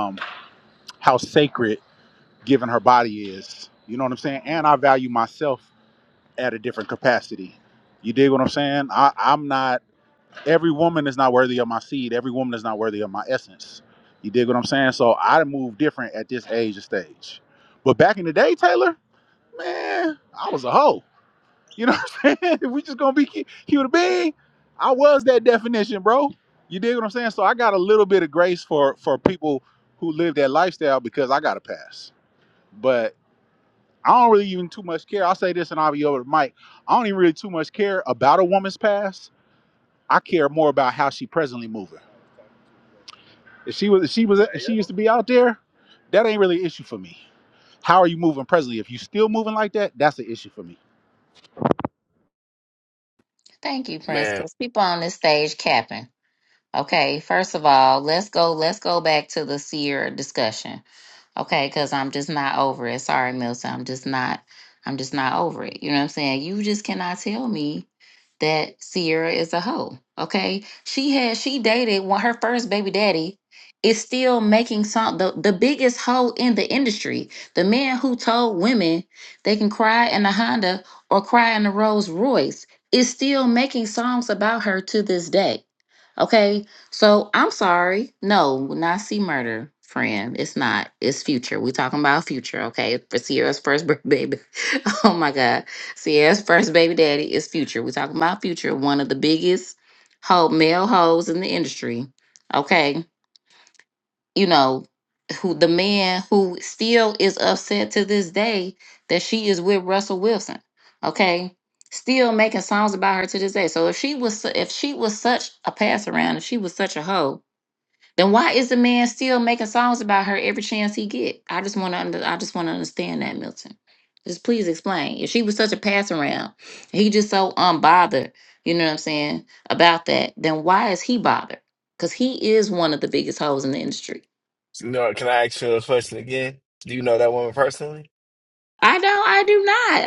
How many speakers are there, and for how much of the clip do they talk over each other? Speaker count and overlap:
three, under 1%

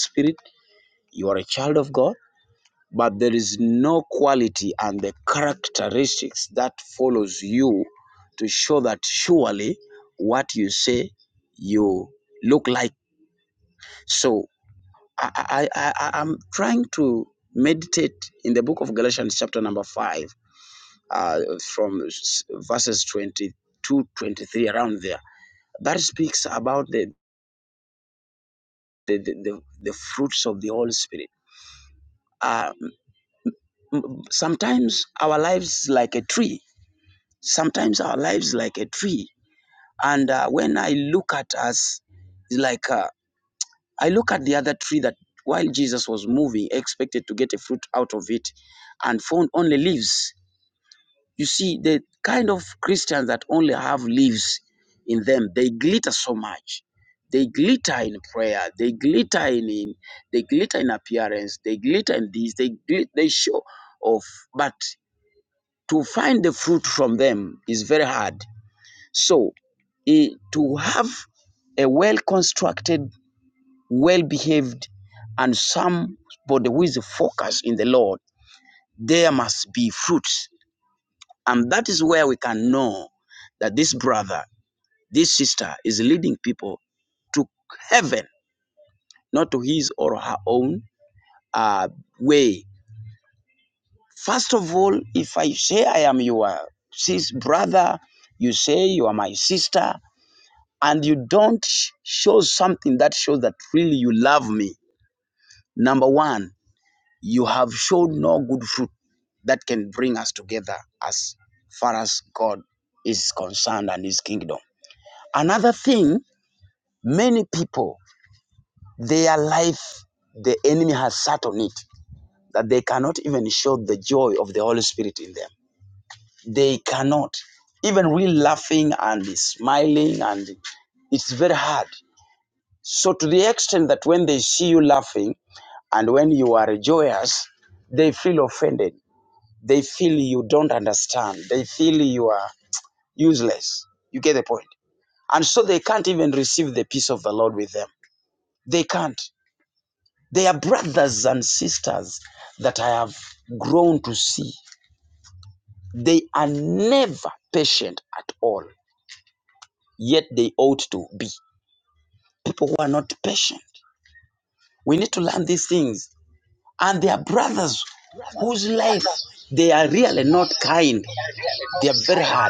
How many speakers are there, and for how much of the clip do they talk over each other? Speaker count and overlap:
one, no overlap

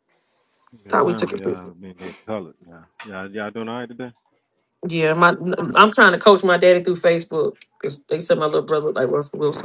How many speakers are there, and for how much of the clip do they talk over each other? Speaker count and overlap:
two, about 8%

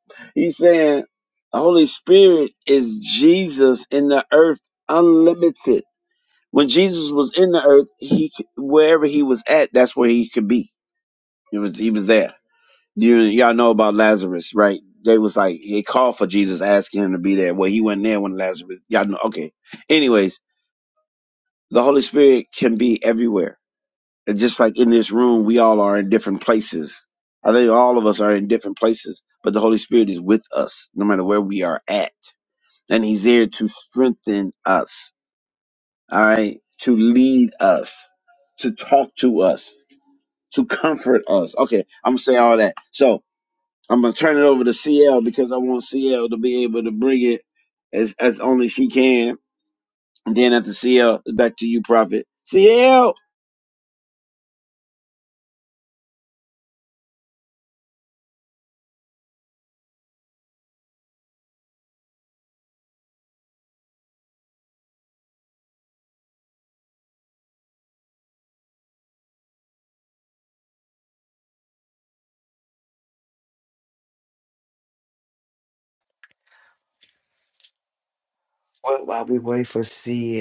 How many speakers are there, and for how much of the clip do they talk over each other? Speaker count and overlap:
two, no overlap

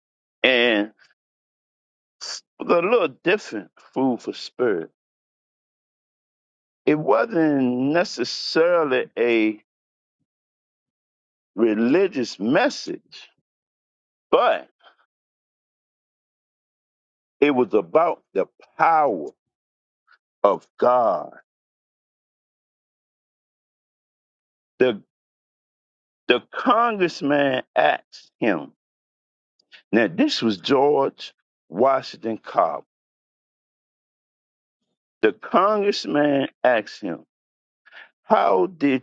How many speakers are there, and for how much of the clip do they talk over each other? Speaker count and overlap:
one, no overlap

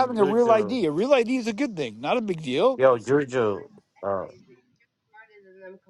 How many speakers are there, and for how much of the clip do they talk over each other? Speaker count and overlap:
three, about 15%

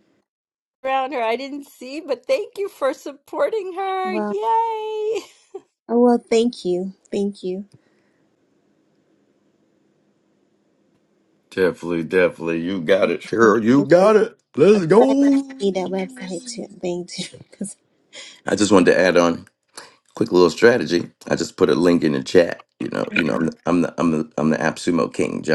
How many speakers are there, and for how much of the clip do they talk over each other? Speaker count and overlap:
three, about 4%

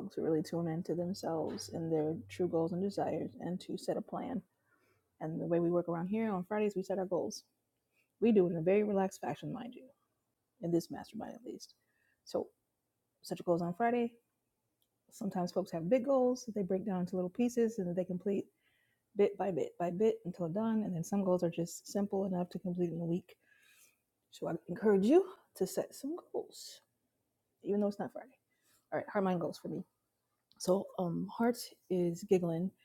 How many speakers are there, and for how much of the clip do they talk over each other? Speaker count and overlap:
one, no overlap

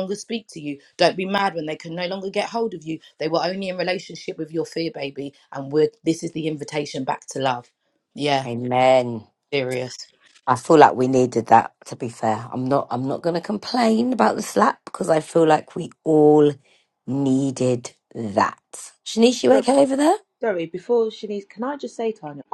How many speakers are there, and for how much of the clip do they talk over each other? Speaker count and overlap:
three, about 1%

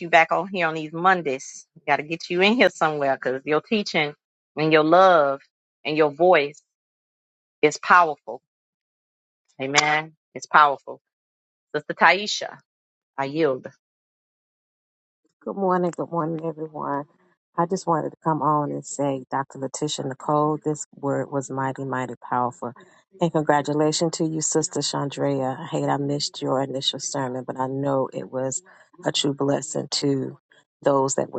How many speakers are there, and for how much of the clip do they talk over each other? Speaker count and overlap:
two, no overlap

